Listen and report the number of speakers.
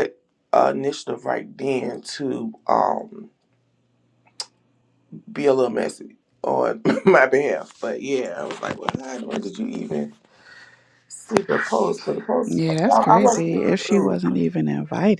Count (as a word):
two